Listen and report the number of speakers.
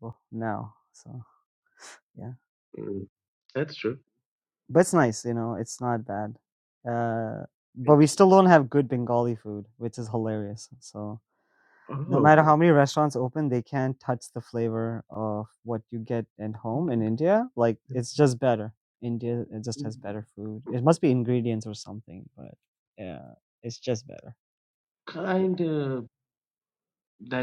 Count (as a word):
two